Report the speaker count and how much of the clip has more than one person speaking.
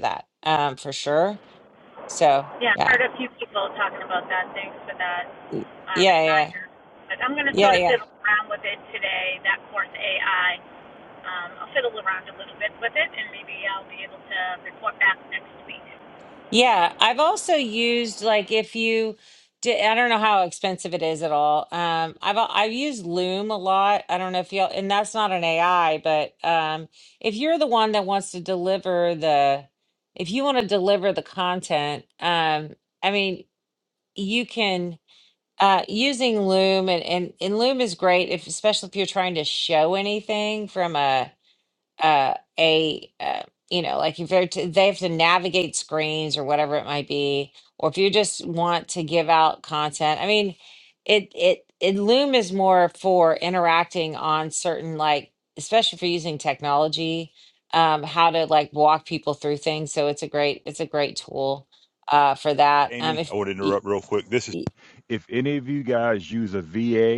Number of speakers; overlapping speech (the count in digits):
3, about 3%